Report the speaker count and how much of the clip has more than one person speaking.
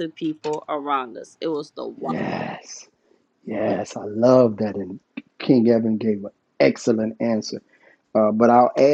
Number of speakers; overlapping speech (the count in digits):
2, about 1%